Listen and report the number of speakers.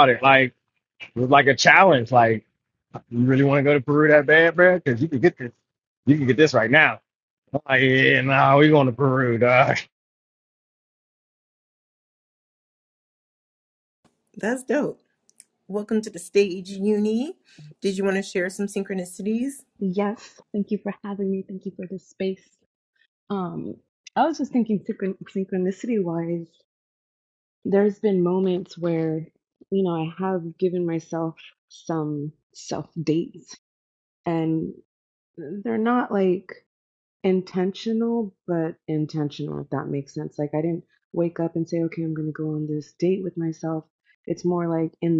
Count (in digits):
3